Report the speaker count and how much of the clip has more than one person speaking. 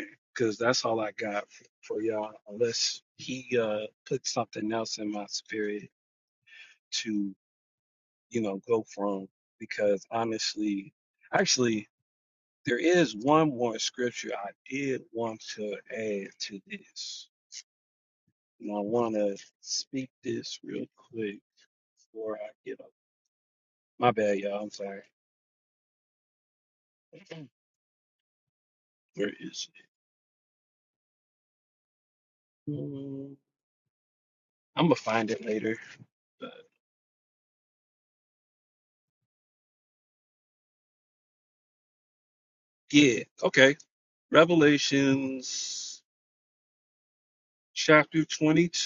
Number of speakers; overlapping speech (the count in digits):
1, no overlap